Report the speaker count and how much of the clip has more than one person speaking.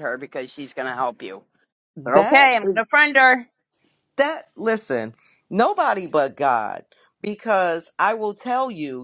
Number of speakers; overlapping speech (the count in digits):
2, about 8%